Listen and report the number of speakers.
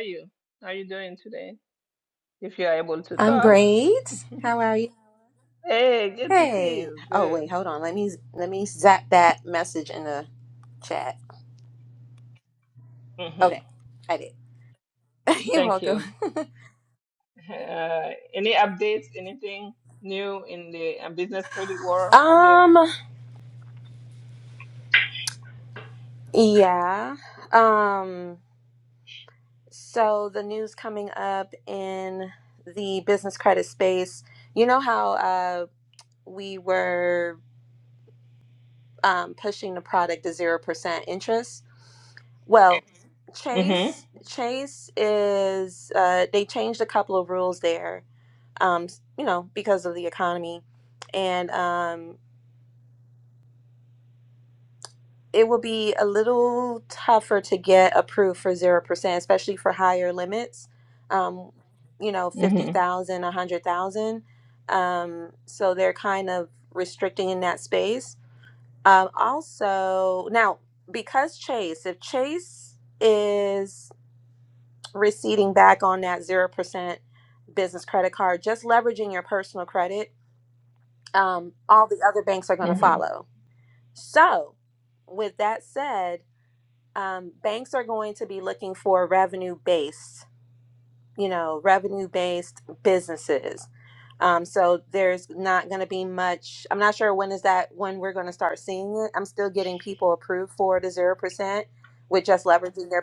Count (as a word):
two